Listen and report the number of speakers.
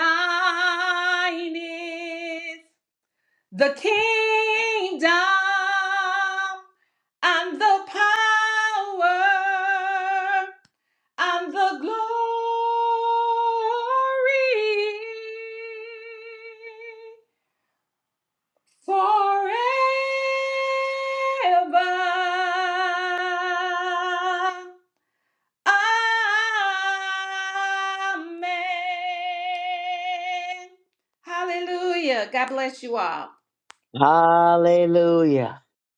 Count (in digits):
2